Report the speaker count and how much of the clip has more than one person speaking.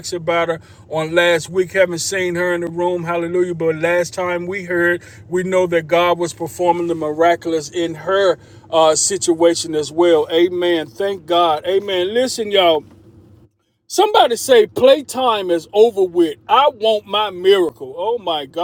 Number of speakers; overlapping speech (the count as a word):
one, no overlap